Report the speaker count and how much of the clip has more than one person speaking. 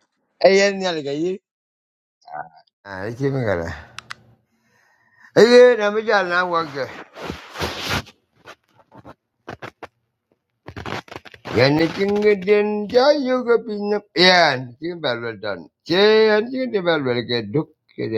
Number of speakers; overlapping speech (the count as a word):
one, no overlap